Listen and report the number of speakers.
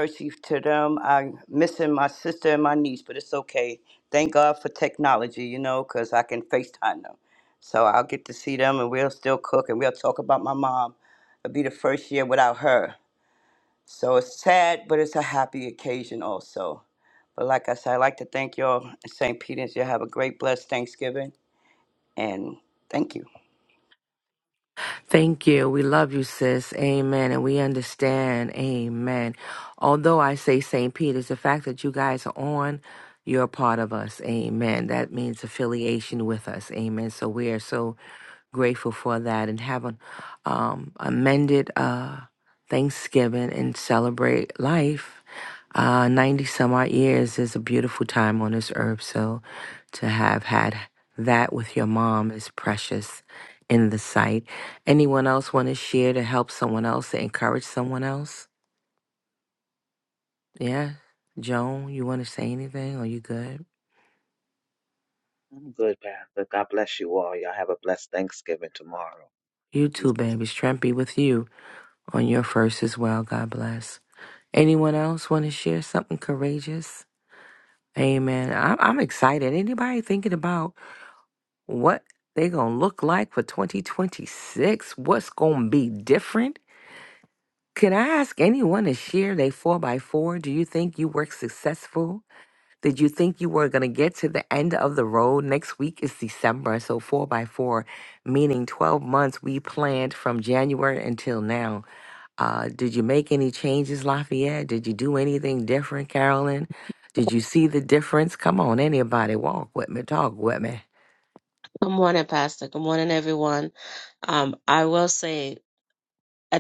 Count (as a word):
four